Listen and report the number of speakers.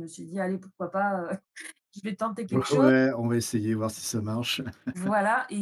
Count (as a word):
two